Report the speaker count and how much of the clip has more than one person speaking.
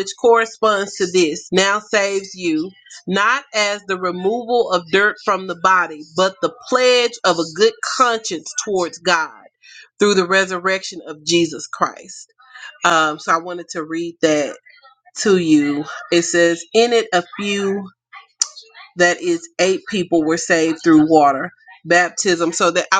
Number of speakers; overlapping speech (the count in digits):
1, no overlap